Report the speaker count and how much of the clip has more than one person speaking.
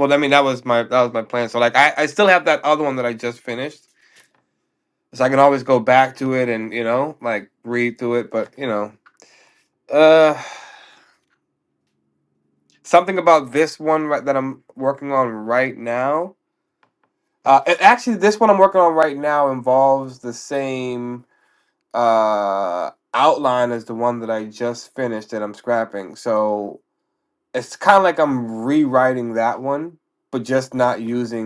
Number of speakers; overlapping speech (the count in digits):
1, no overlap